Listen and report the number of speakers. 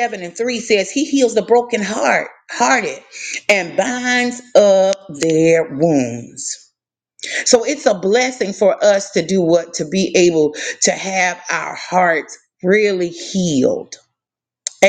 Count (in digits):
1